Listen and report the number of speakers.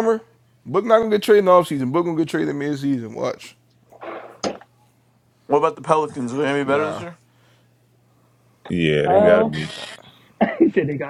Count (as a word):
four